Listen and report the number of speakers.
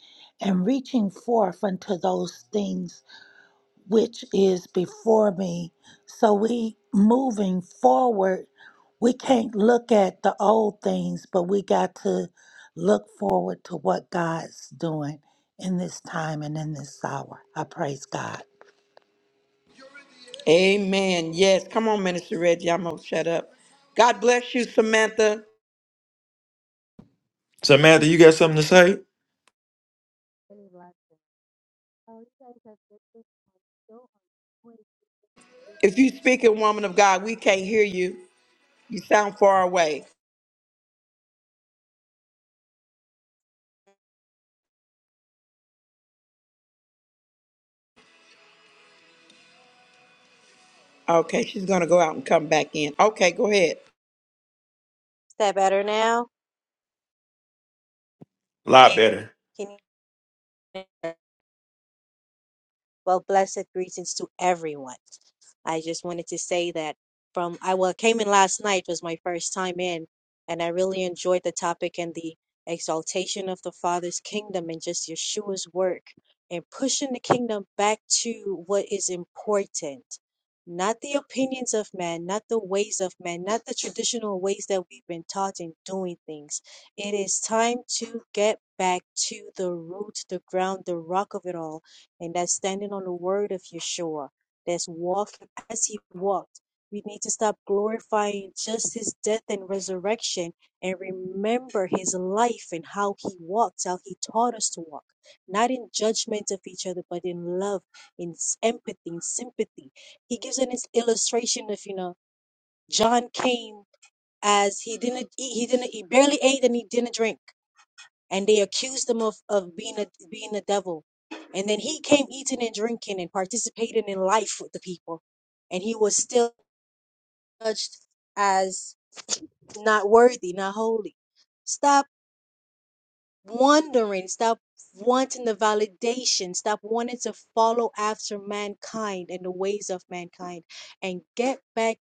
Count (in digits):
4